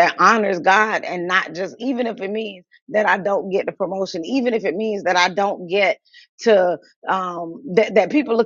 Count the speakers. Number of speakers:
one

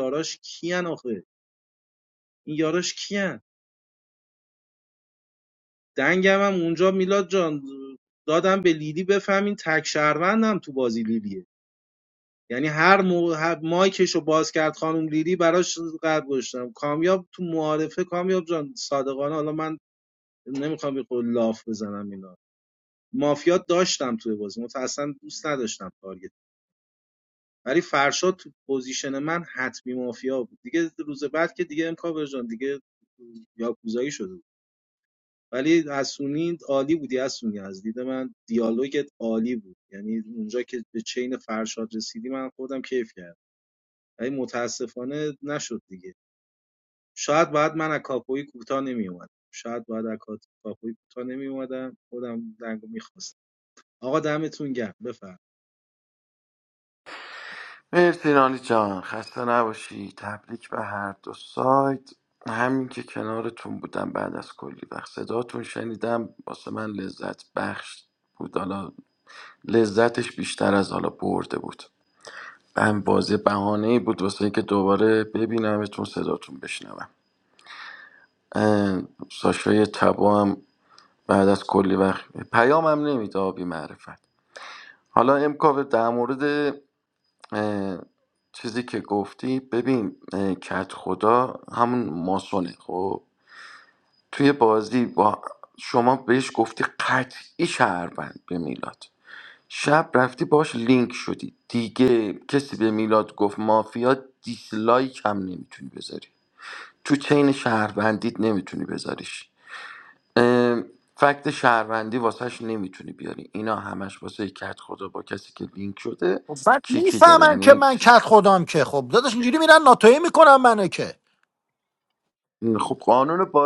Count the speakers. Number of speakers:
three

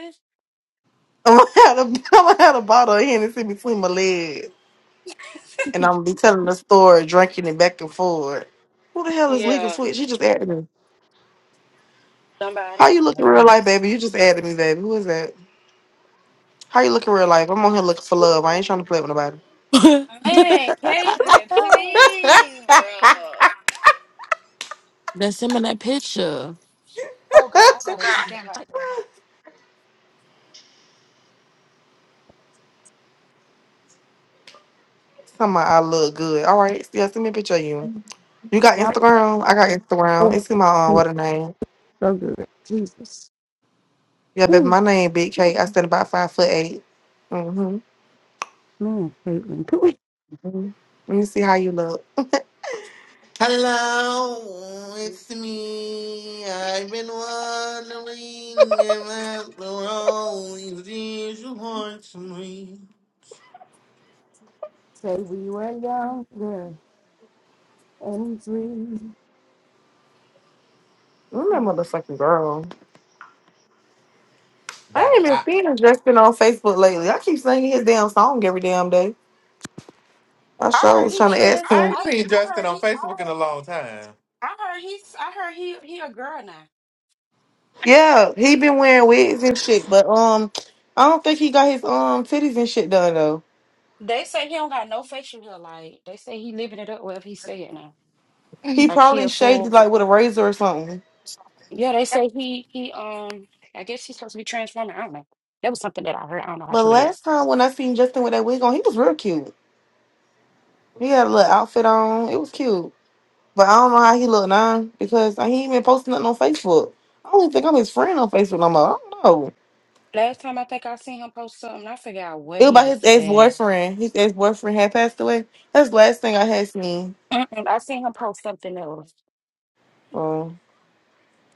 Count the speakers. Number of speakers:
four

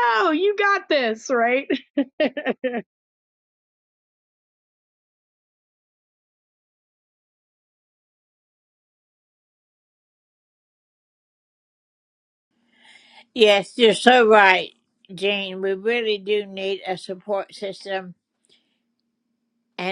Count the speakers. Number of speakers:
two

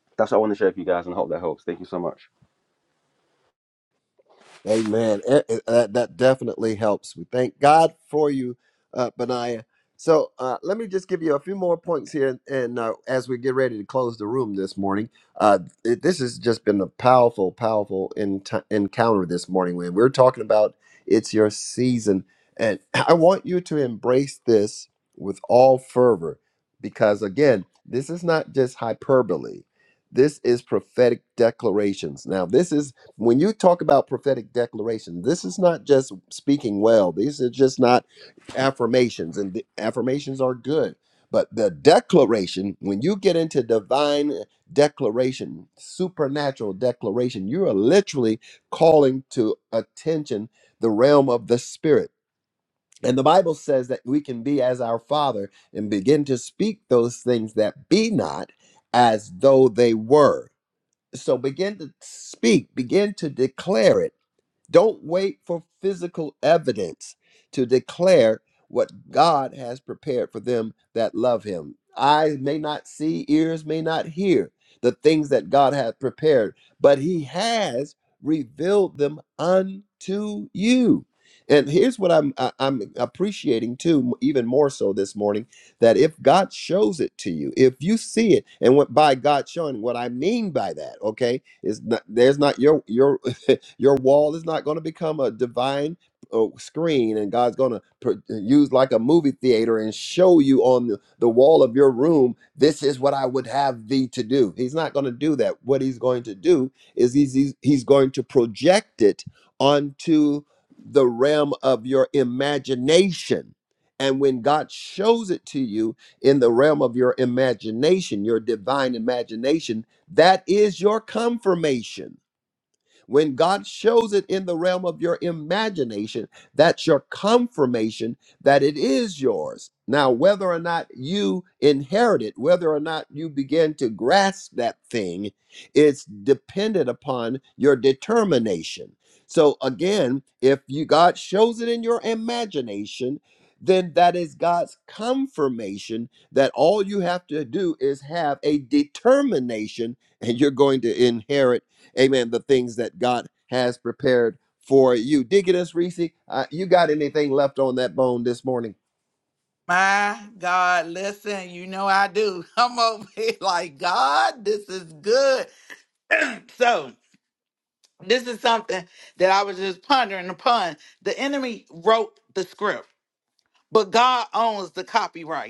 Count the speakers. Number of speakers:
three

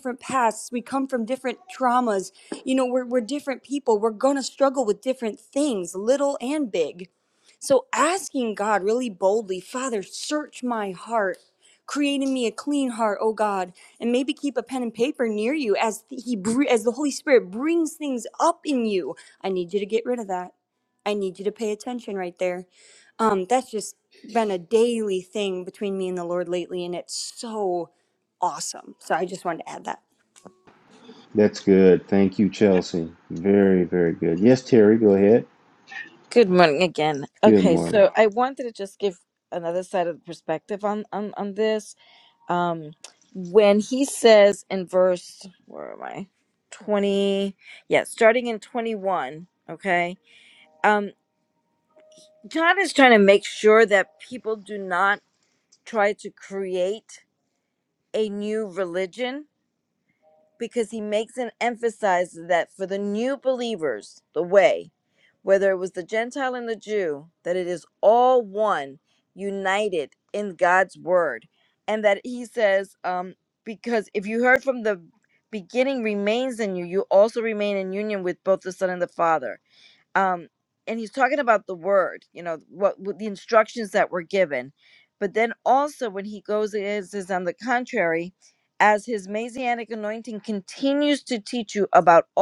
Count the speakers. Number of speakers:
three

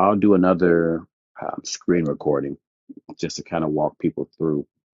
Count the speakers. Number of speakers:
one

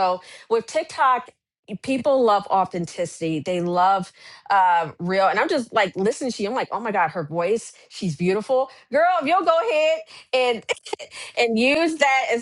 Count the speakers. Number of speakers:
one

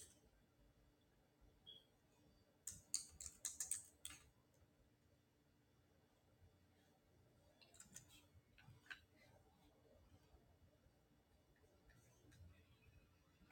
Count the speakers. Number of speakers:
zero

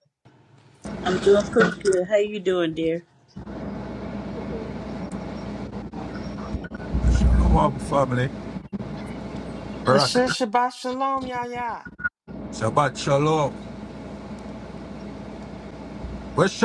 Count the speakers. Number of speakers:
three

